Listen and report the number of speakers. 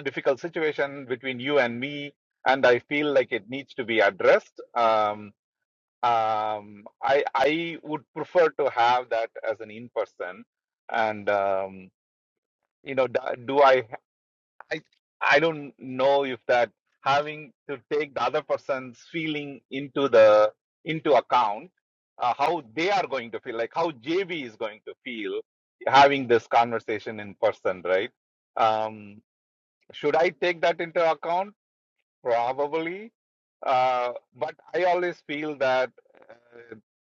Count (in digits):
1